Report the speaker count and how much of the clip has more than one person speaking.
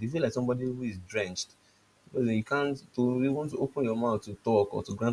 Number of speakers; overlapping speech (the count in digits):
1, no overlap